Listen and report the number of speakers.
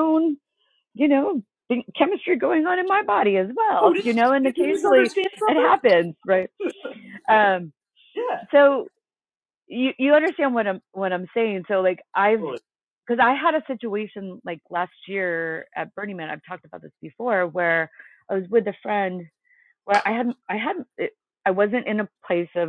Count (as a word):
two